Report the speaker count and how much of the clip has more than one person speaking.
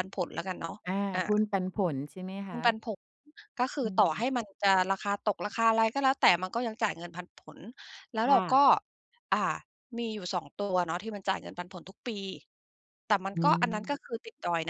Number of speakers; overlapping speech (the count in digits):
2, about 10%